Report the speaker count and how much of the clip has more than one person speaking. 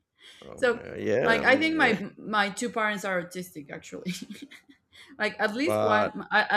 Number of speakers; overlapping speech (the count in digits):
2, about 22%